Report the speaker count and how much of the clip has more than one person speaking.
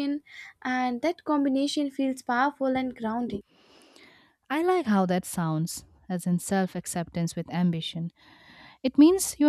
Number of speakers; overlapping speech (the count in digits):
2, no overlap